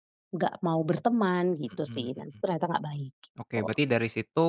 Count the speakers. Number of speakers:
2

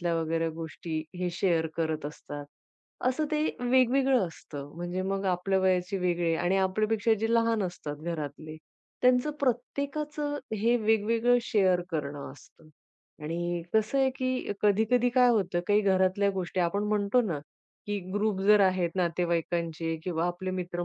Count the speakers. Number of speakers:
1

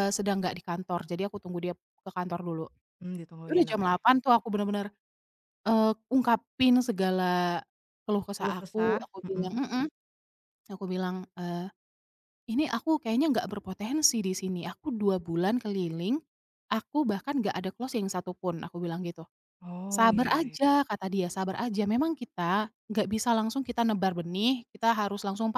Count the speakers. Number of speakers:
2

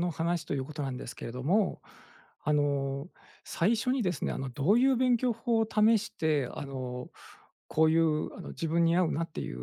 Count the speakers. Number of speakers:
1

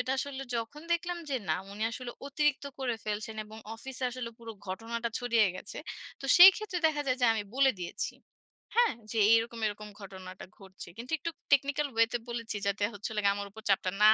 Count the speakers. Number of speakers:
1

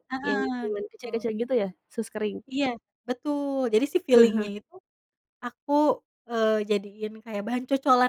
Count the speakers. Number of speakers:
2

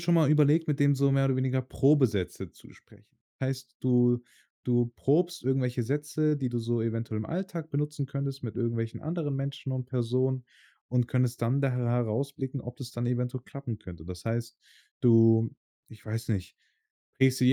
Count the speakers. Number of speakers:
1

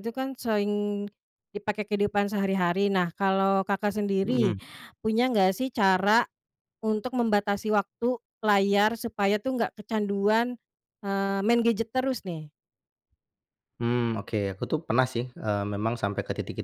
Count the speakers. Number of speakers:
2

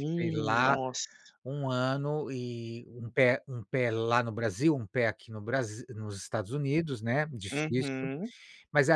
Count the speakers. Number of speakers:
2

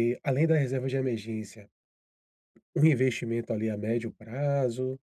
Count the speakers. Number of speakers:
1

